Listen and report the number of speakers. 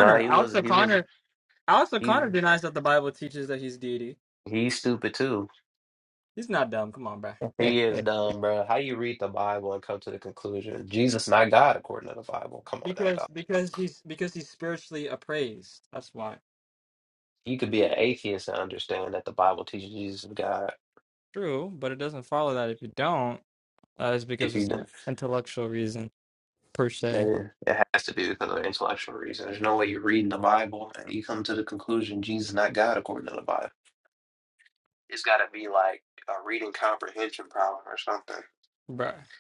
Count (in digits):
2